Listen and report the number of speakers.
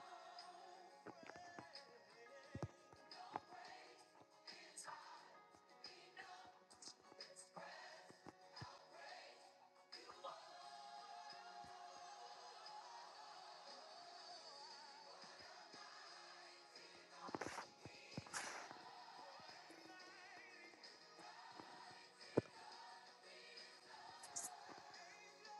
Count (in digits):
0